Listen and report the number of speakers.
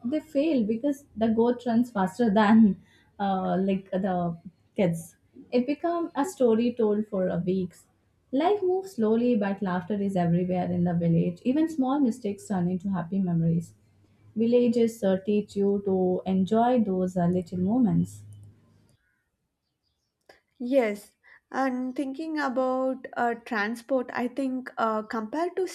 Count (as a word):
two